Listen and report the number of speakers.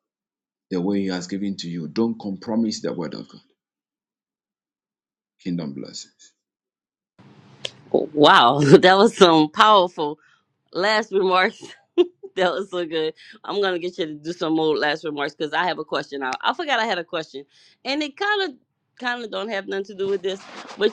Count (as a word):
two